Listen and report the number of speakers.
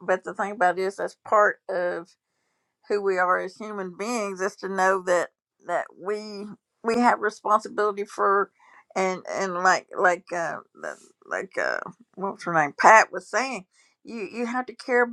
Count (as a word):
one